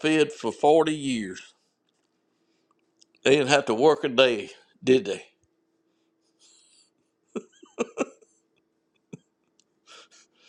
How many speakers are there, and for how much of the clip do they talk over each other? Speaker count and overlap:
one, no overlap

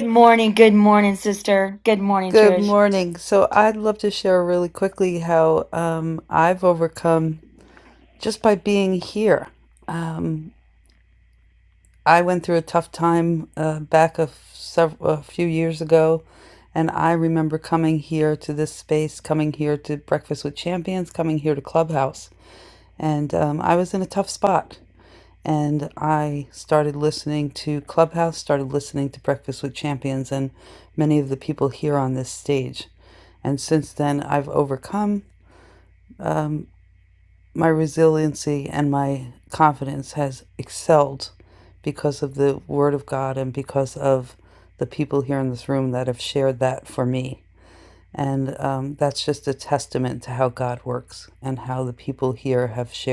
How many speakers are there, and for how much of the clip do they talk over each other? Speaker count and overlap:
two, about 1%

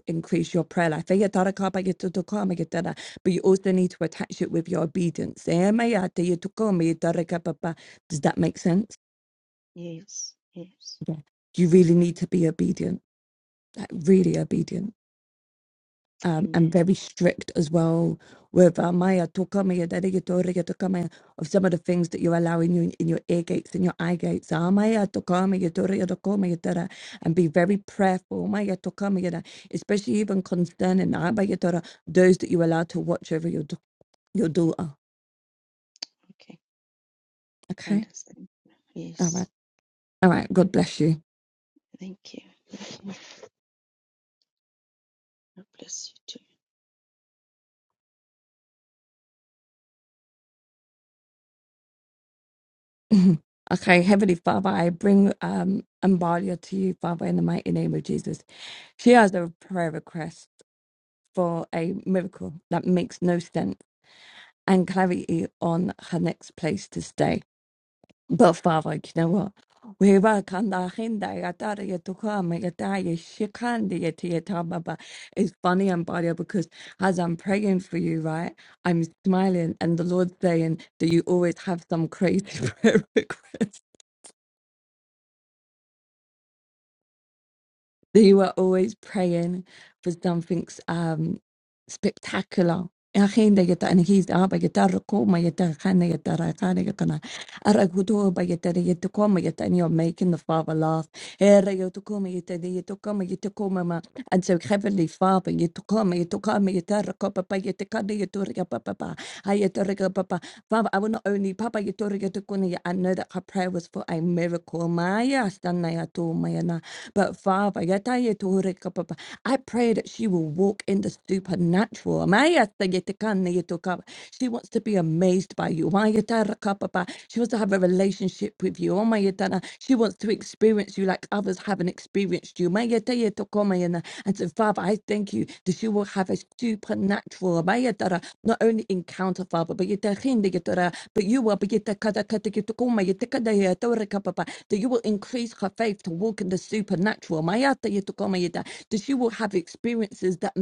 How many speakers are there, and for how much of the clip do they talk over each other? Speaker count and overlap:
two, under 1%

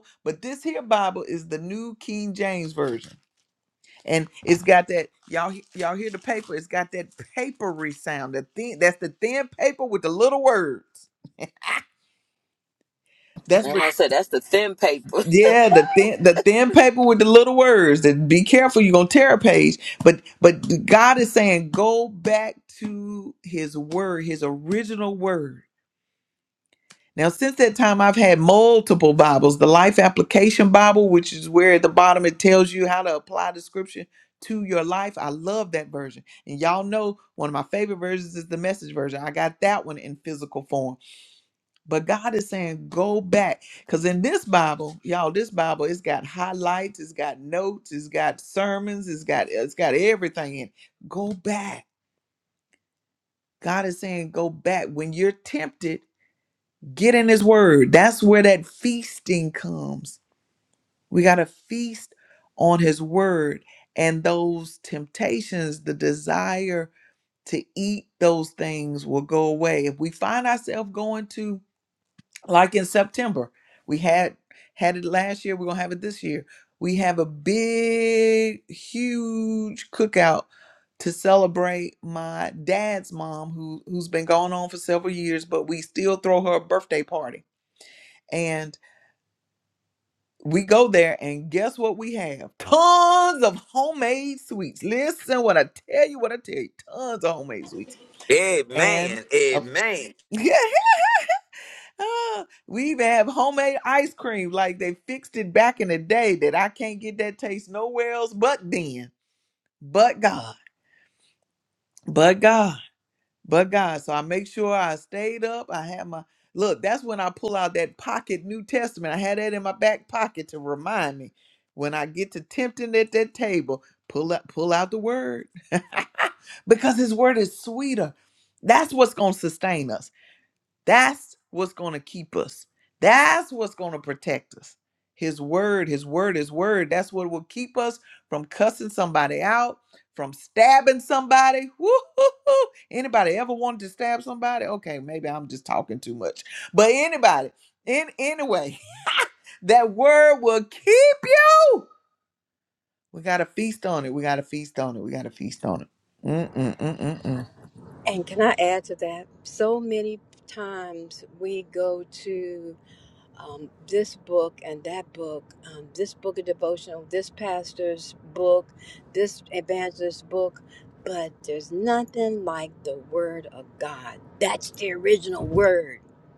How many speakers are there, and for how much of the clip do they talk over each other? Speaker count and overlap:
four, under 1%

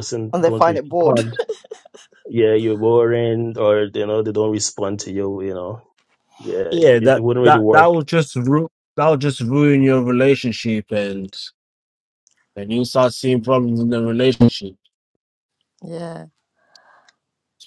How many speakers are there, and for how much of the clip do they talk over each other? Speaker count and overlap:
three, about 12%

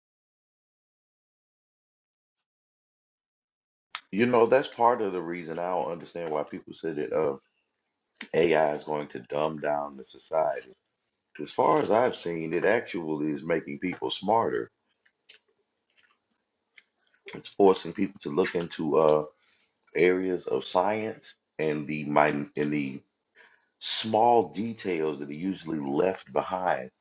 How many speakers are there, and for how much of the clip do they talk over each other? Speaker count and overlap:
one, no overlap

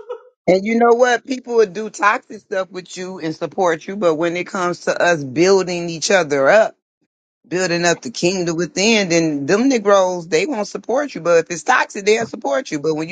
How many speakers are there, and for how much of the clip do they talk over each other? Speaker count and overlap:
one, no overlap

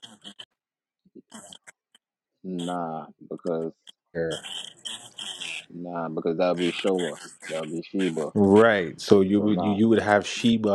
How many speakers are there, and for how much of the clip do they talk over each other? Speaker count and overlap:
two, about 4%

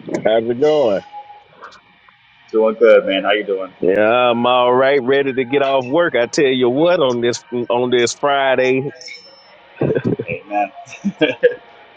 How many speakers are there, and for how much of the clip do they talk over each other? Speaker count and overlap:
two, no overlap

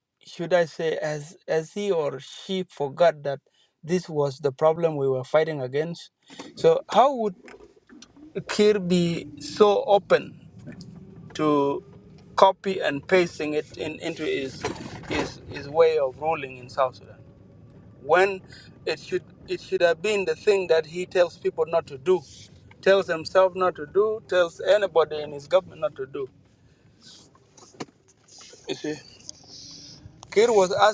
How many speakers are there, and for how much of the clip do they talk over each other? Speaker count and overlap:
one, no overlap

